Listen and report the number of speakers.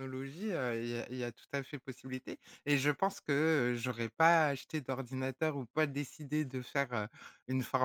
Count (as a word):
one